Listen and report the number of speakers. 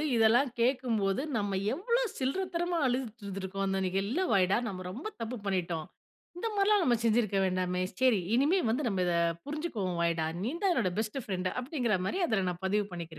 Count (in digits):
1